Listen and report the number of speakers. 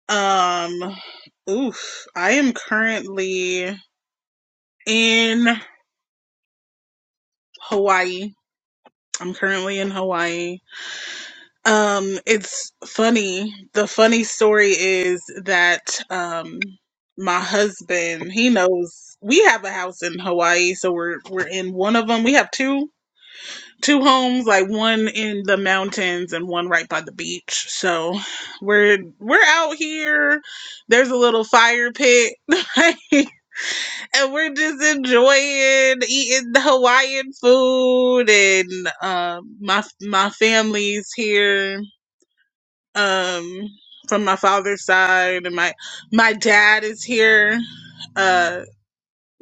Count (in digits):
1